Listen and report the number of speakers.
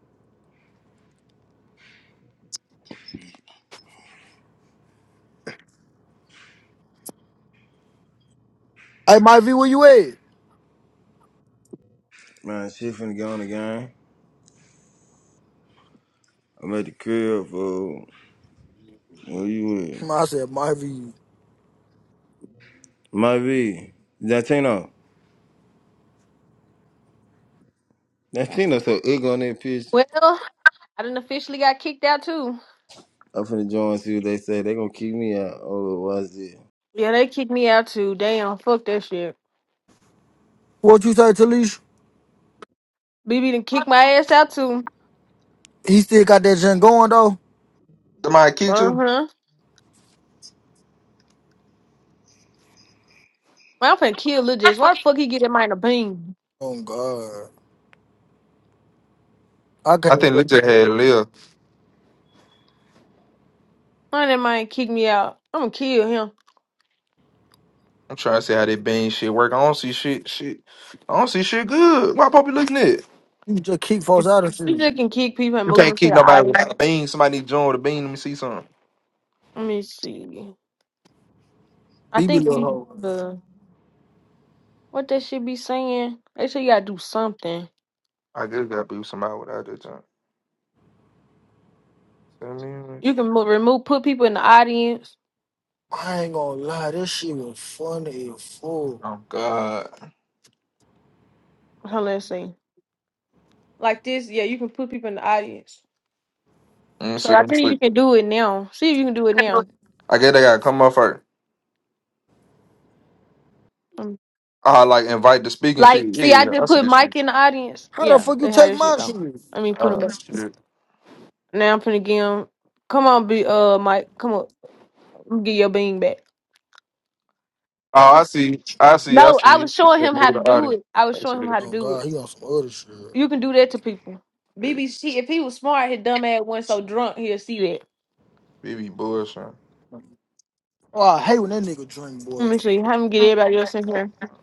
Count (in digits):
4